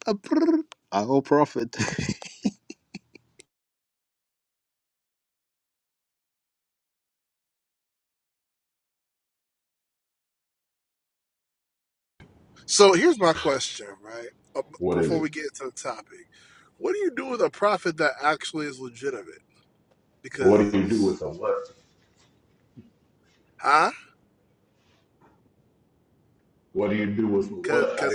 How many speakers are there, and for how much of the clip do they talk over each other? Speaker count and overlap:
three, about 5%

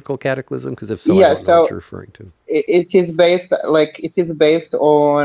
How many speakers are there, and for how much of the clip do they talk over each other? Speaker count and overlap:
two, about 13%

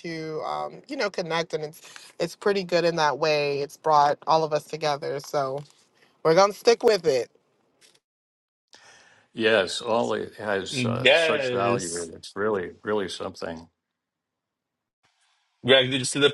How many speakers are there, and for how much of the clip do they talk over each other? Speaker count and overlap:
three, about 6%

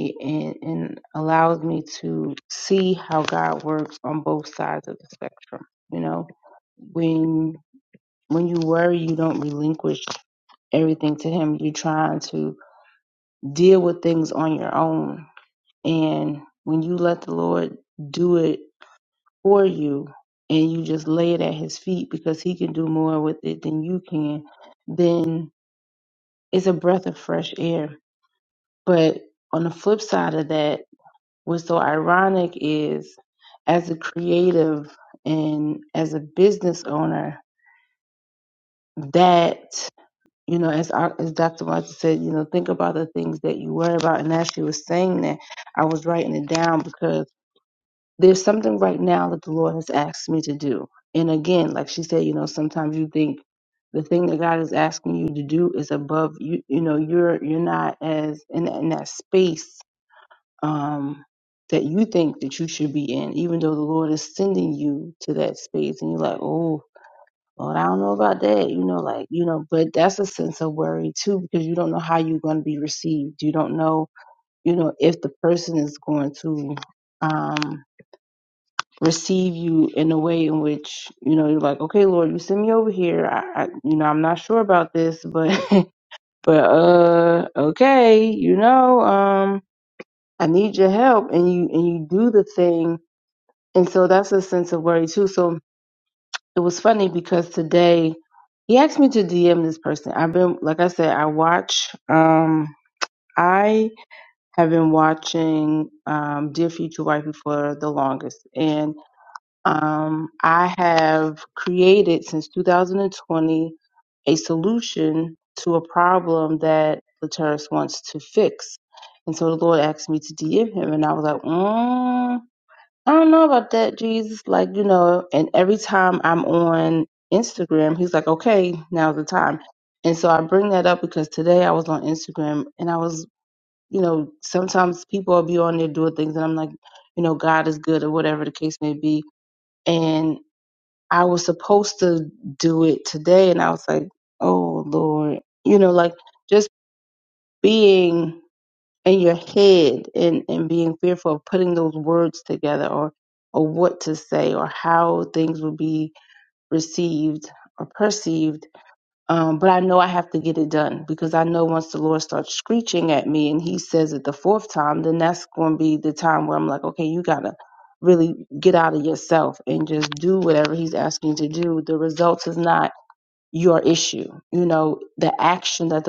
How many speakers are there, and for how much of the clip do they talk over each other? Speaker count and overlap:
one, no overlap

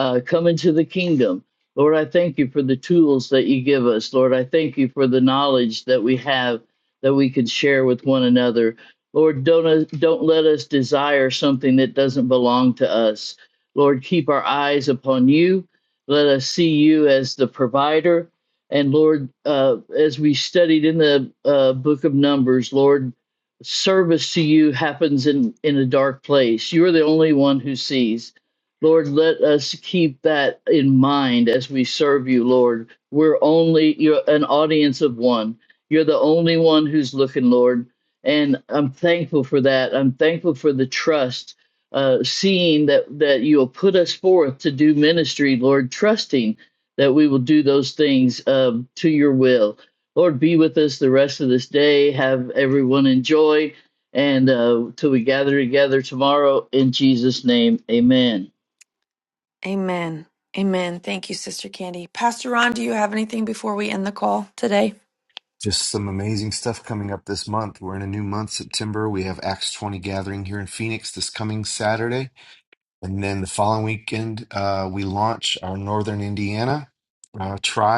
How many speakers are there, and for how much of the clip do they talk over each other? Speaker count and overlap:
three, no overlap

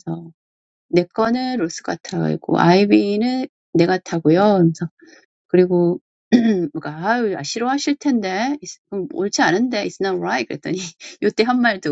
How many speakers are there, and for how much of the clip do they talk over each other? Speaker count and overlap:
one, no overlap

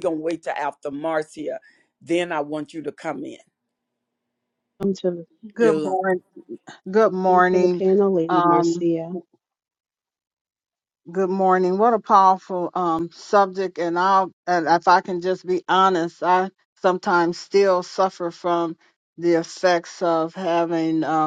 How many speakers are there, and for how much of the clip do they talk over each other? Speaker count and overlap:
three, about 9%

